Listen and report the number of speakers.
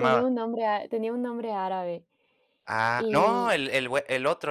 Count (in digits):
2